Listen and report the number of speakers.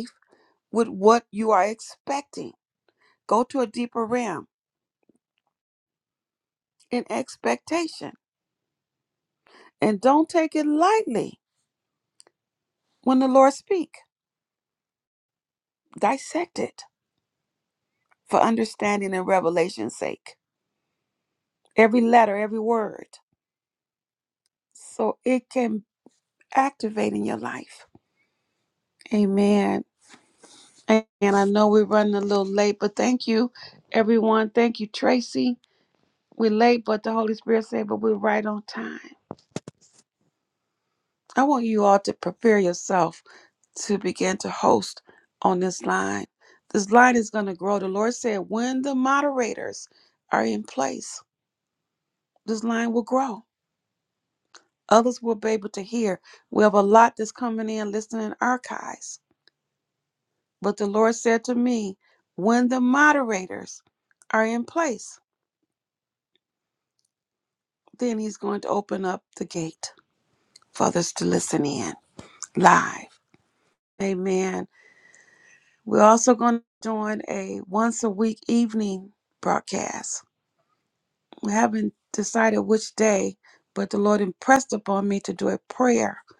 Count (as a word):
one